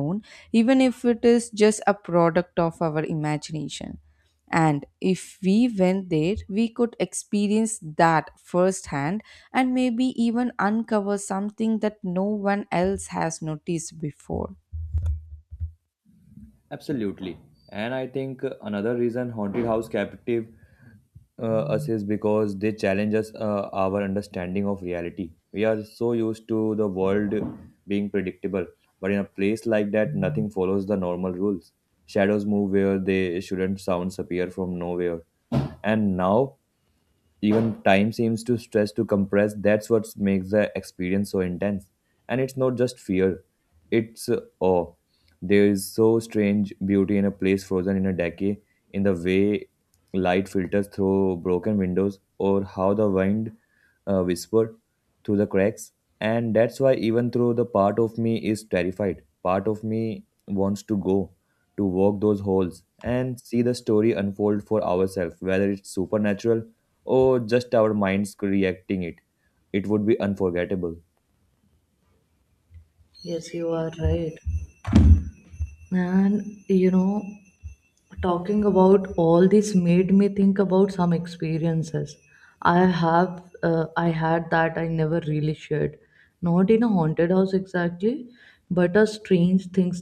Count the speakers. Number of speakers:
3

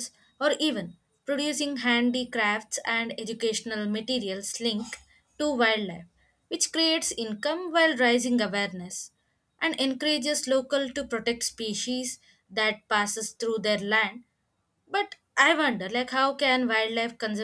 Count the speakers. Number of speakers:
1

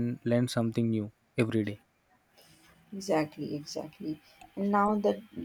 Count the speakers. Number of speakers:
2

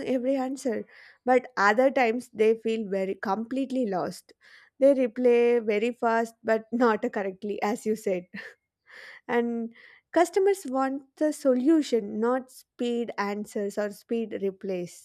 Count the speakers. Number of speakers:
1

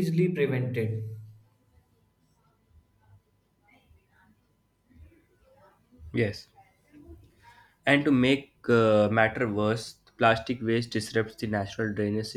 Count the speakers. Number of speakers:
2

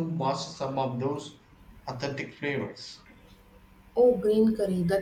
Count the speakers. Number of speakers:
2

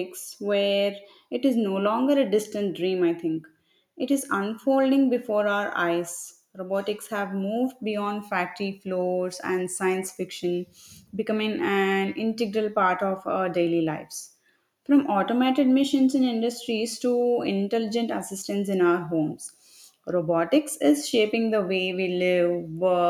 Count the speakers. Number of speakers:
1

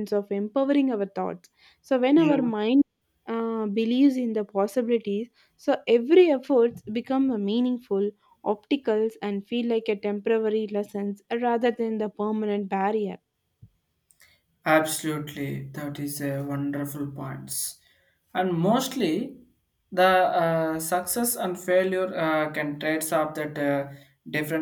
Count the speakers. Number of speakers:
2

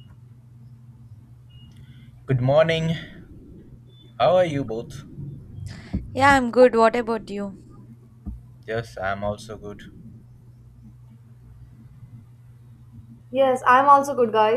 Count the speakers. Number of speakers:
3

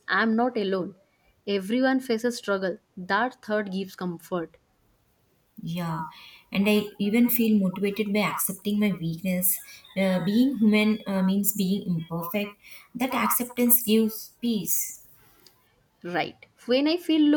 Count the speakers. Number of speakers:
2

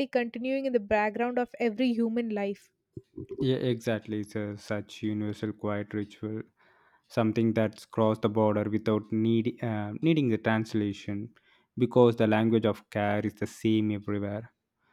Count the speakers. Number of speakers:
2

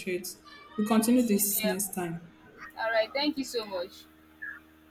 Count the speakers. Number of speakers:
2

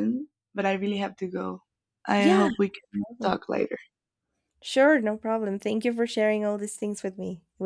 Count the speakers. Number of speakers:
2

